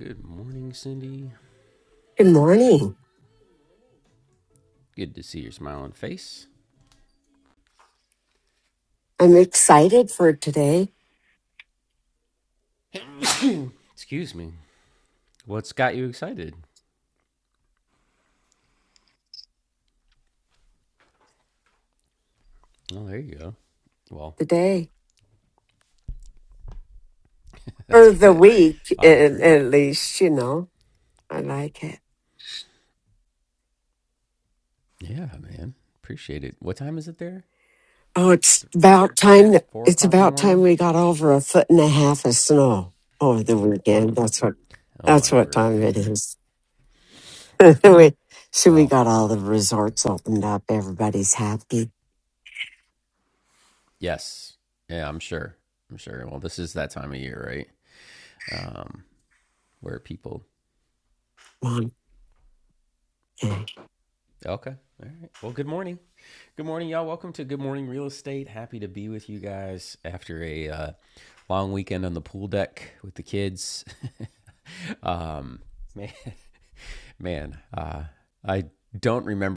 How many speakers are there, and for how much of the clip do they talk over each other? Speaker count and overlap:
2, about 3%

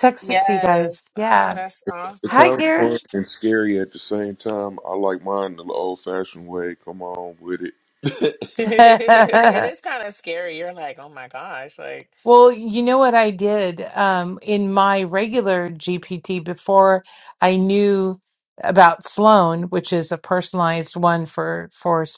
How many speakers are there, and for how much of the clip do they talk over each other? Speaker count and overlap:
3, about 10%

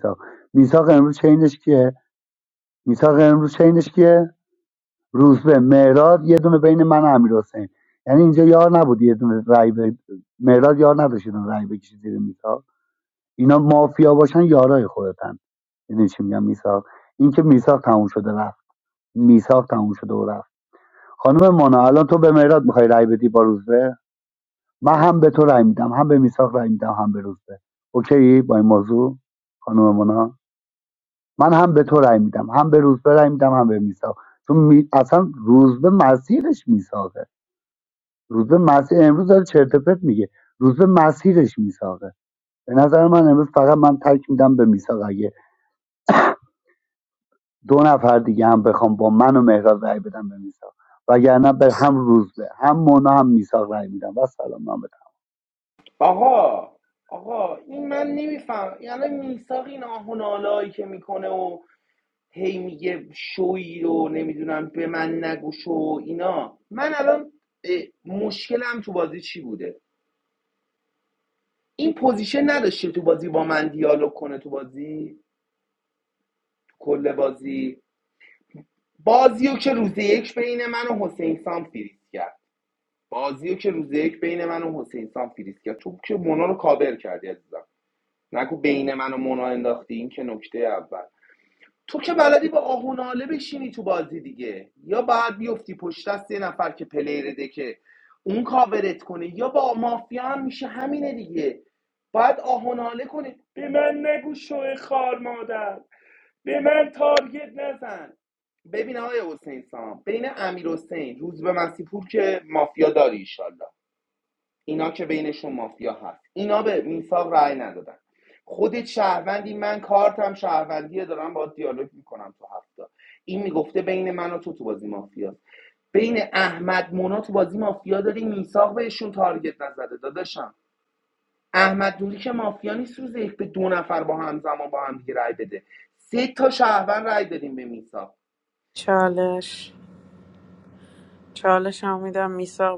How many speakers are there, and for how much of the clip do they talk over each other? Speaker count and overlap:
3, no overlap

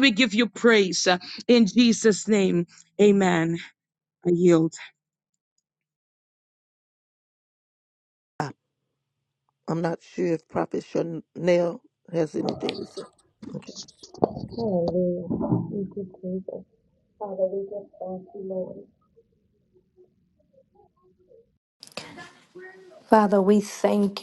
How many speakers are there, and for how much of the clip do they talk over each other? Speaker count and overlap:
3, no overlap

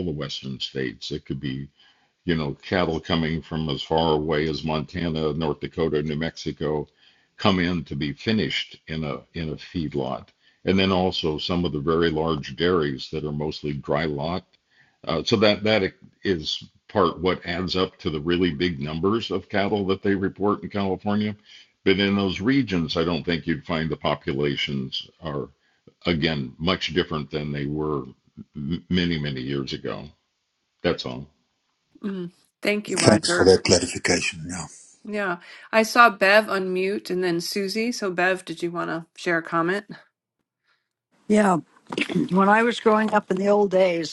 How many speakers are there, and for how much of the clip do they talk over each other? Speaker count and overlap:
4, about 1%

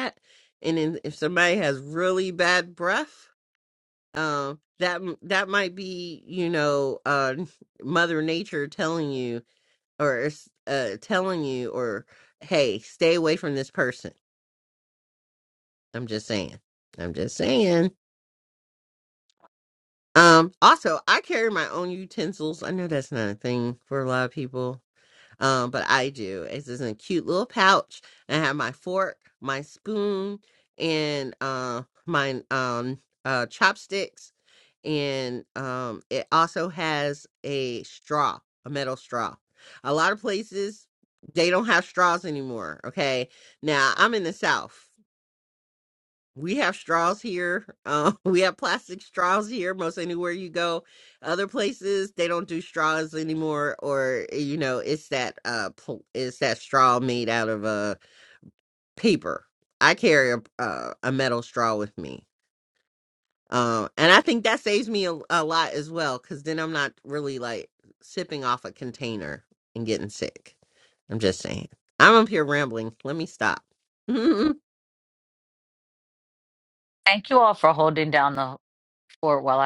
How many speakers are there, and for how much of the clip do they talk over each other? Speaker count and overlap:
2, no overlap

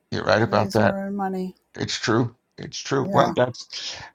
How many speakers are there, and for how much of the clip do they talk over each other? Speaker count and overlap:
2, about 22%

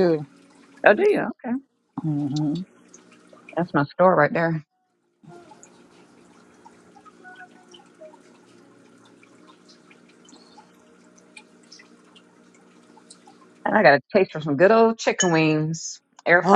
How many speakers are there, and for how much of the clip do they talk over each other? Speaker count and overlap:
2, about 1%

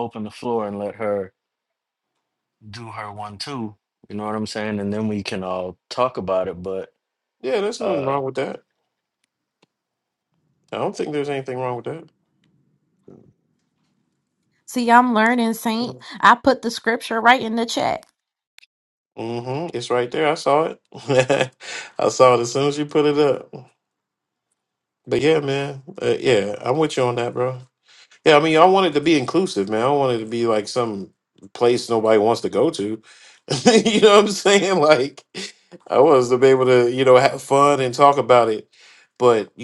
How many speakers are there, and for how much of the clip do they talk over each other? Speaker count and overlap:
3, about 1%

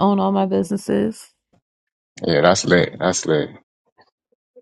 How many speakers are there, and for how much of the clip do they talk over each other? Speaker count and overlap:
2, no overlap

